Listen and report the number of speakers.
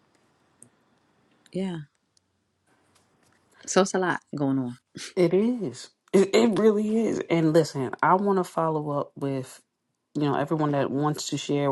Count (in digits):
2